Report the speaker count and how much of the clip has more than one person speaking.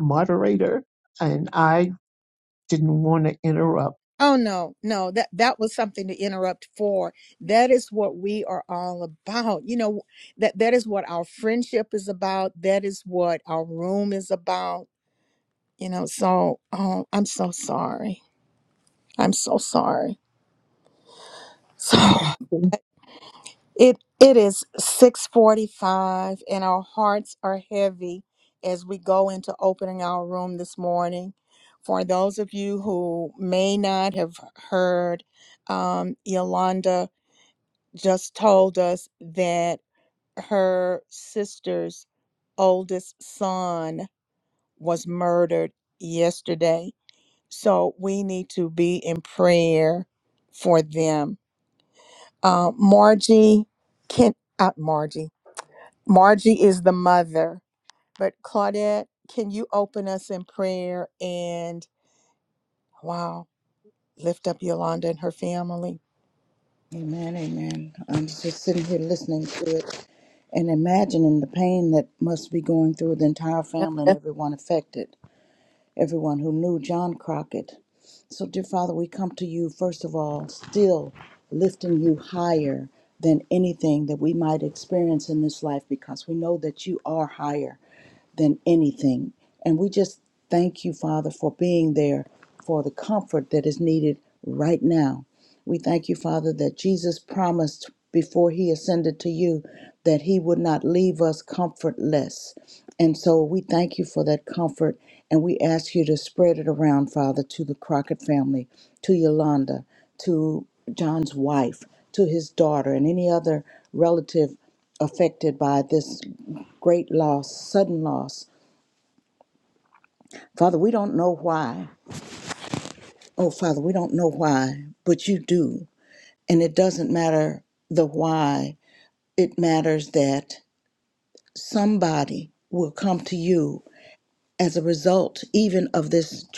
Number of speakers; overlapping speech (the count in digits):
3, no overlap